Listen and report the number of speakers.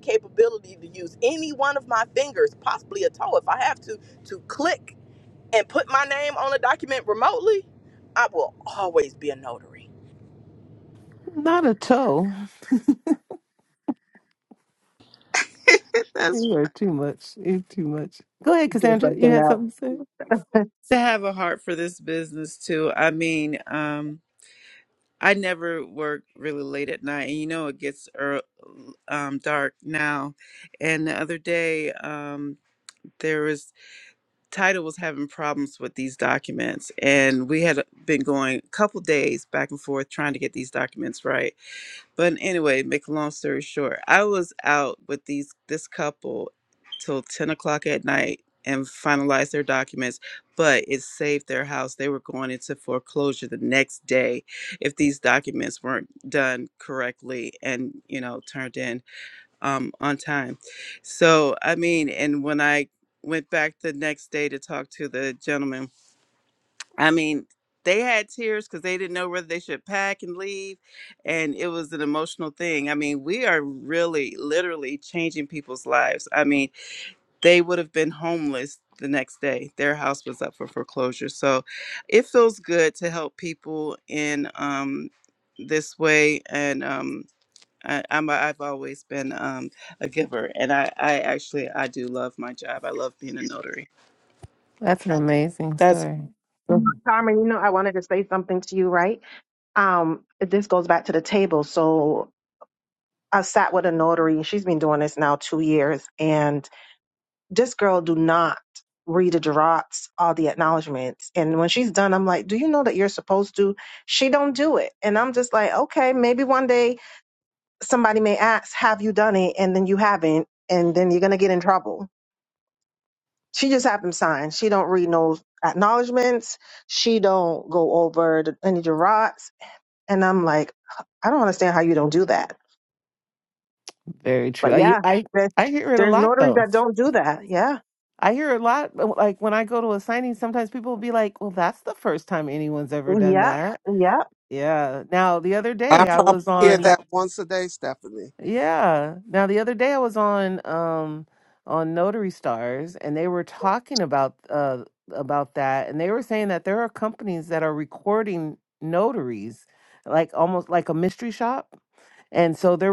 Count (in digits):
5